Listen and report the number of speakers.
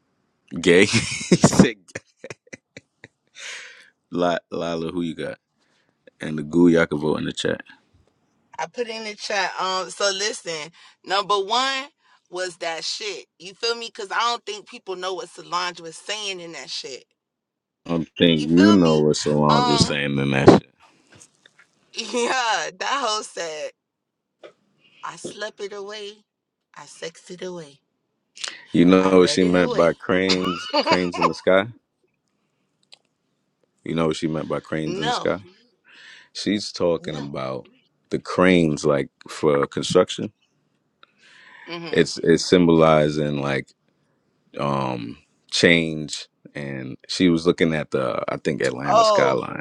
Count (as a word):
two